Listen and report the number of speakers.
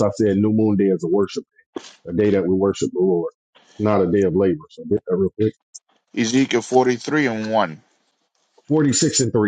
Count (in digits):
2